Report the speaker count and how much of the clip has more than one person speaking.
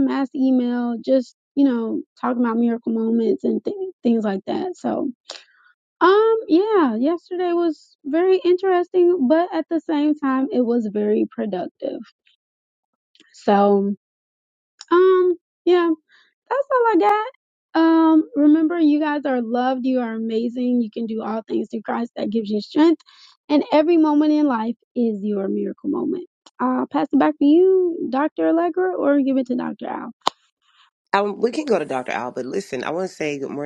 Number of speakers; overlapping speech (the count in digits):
2, no overlap